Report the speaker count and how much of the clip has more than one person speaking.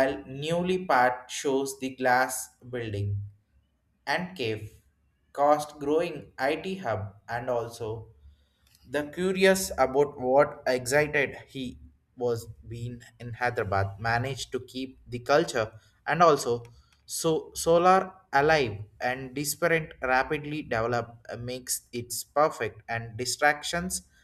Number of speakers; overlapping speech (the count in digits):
1, no overlap